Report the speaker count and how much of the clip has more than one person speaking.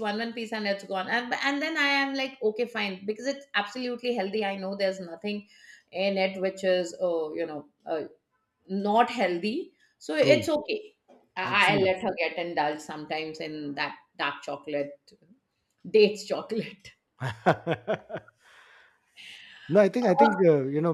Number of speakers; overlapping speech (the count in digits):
2, about 5%